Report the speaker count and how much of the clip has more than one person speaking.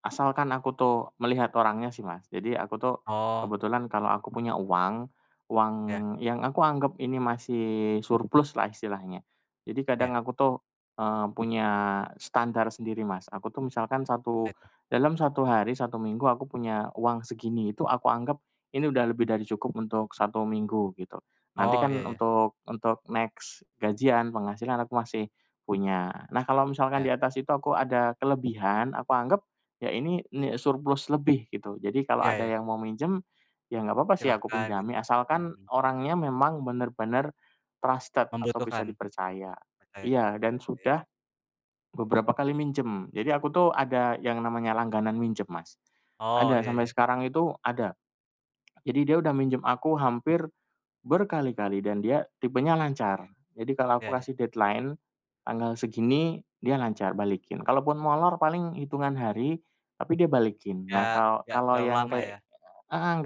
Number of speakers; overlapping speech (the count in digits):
2, about 8%